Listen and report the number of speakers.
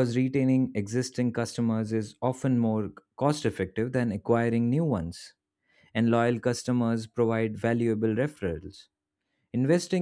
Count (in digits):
1